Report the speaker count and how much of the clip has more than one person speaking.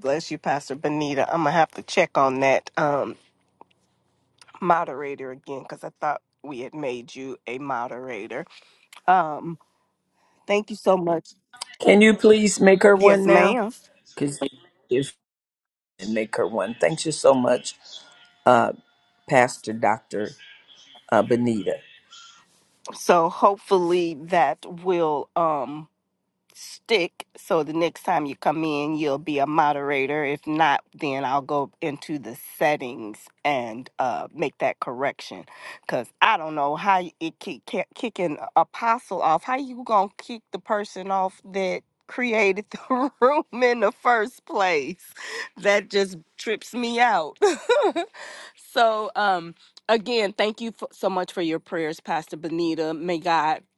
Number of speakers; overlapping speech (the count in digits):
2, about 1%